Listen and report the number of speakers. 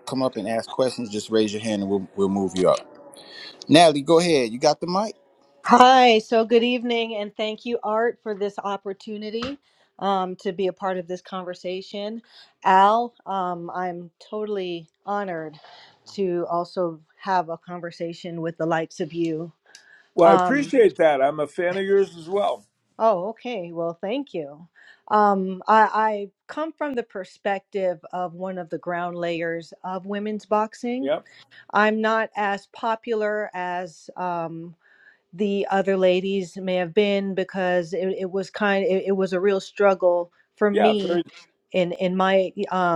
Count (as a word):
three